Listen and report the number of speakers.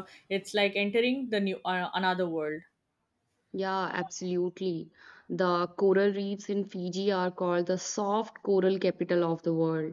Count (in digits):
2